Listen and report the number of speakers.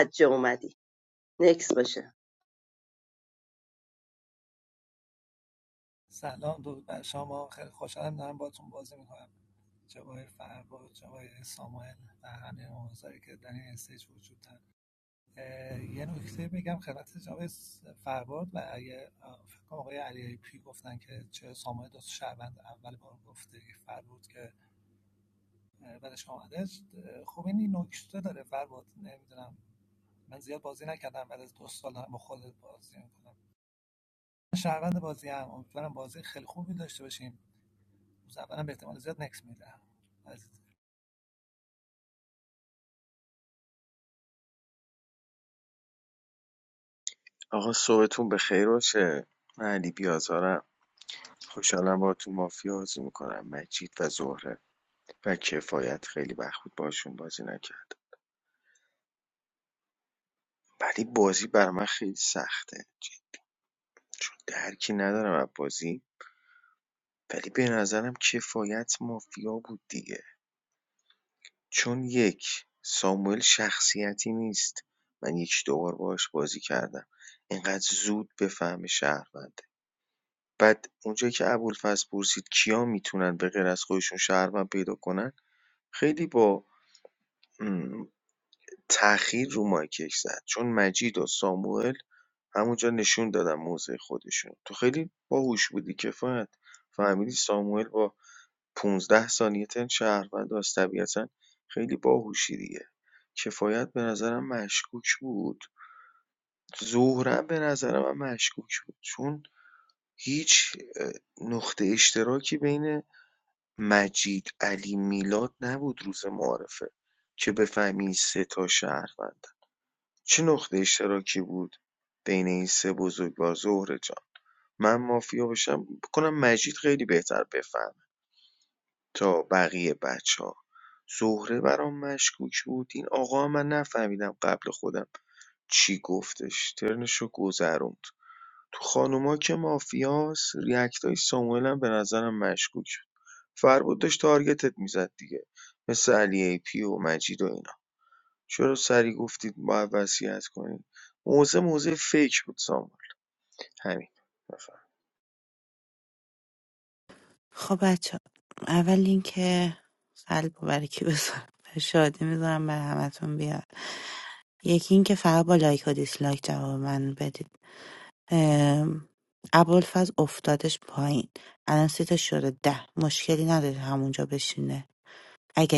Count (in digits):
4